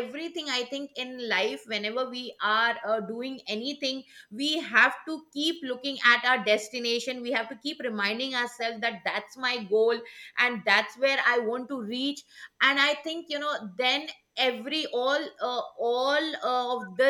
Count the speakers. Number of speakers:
1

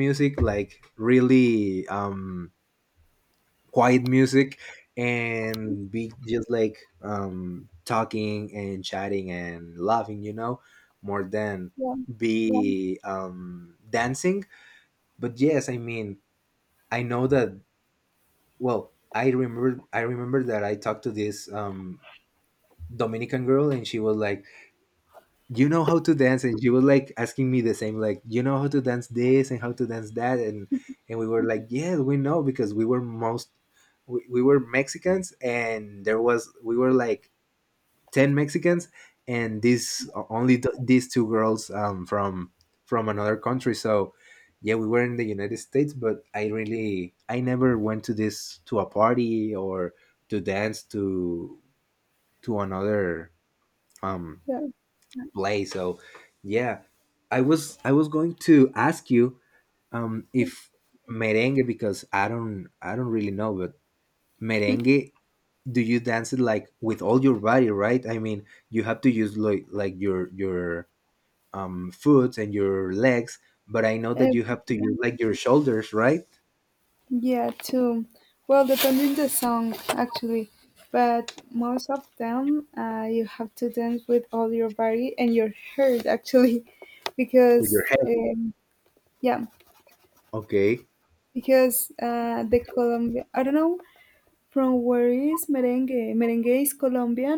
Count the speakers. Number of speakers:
2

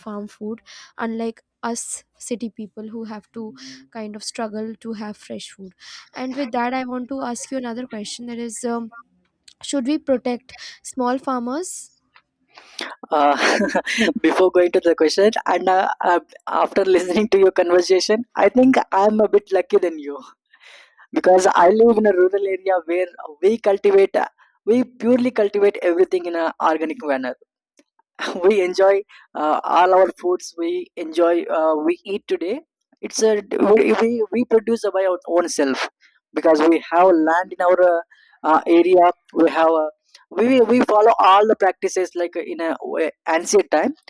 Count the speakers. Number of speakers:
2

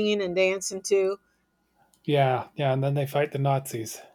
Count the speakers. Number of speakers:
2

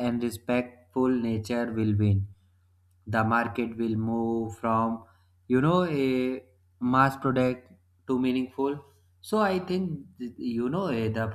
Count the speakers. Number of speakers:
1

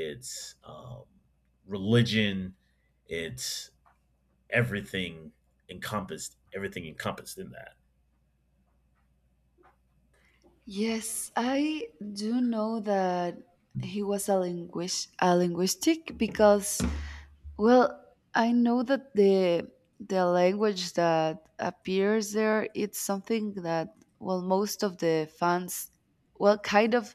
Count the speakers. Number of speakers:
2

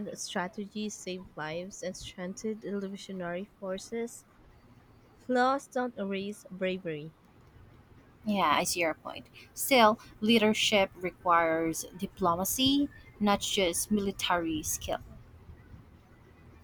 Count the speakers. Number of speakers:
2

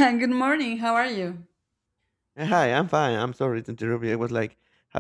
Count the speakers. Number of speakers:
2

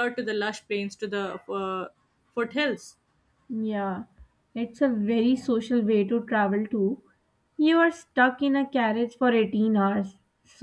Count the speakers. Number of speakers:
2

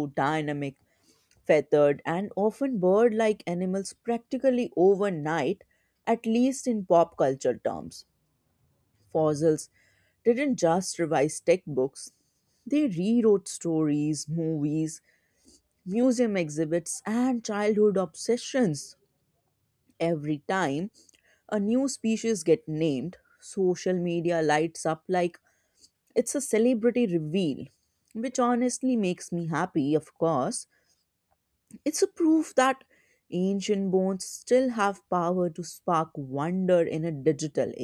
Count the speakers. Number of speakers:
1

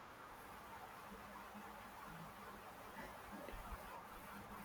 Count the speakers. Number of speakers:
0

